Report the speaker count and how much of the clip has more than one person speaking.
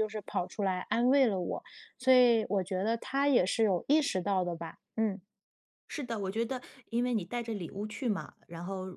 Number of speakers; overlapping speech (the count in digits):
2, no overlap